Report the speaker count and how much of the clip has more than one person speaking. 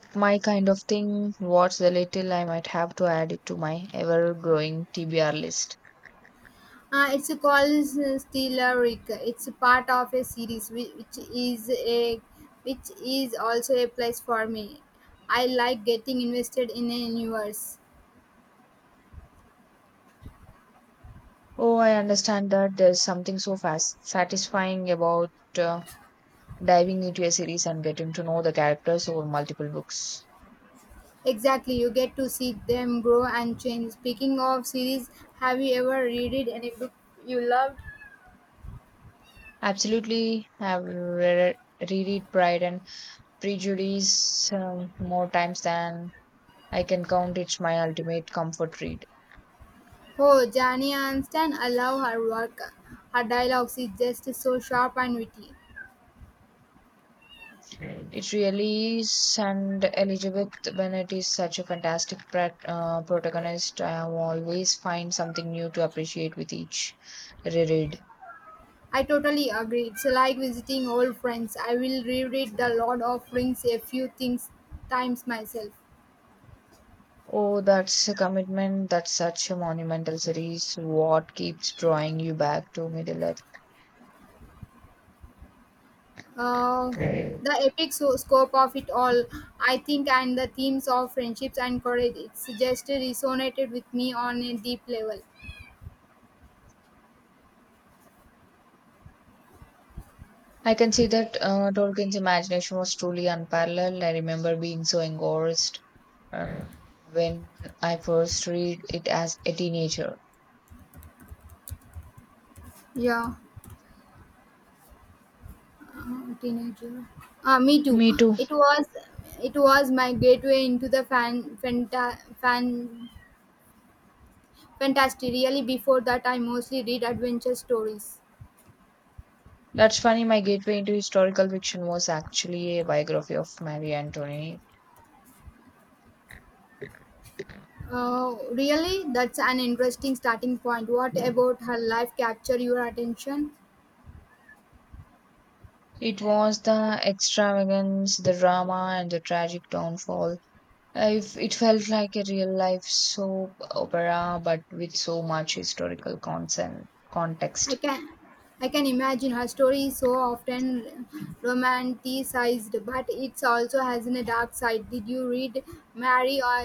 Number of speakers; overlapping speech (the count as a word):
two, under 1%